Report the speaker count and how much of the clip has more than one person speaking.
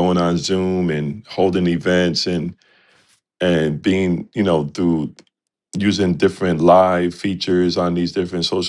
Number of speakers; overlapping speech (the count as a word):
one, no overlap